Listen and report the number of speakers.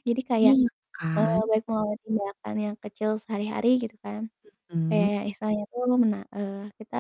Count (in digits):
2